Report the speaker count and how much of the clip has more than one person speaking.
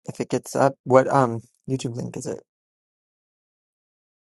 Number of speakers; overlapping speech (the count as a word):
one, no overlap